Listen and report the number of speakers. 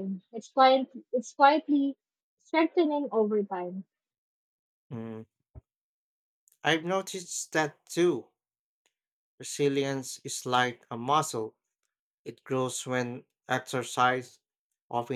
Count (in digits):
2